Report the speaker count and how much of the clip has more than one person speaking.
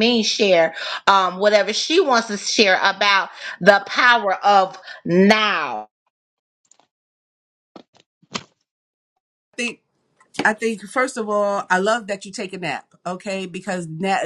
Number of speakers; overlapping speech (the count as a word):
two, no overlap